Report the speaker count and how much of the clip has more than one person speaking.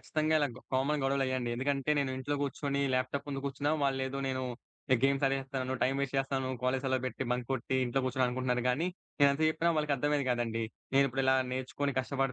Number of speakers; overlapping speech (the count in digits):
1, no overlap